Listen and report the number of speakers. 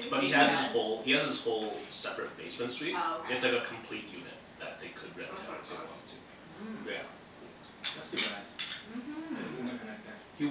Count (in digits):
4